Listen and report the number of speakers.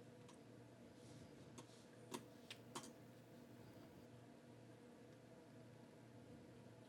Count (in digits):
0